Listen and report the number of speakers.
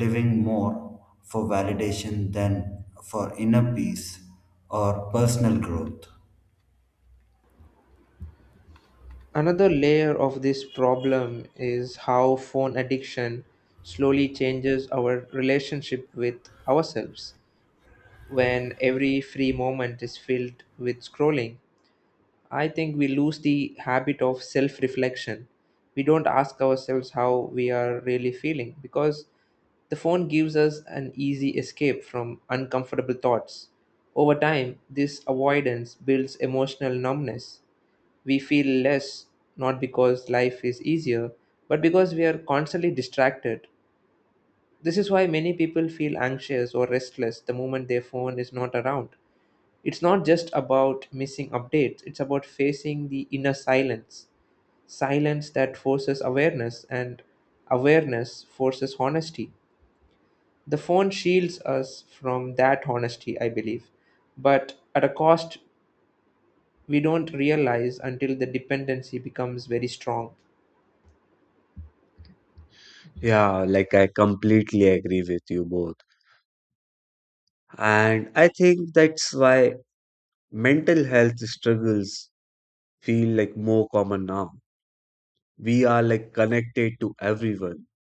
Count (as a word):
three